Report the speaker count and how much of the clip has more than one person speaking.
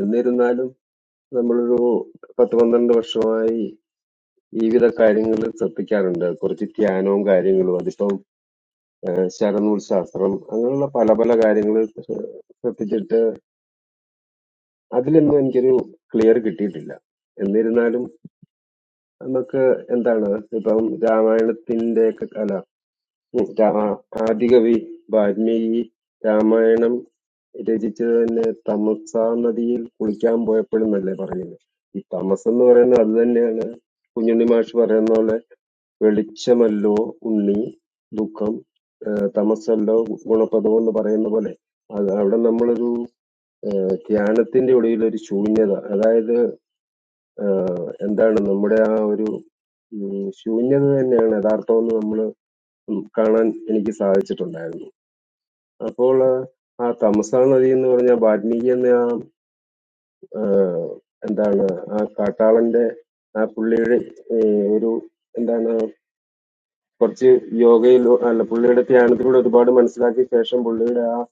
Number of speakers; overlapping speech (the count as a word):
one, no overlap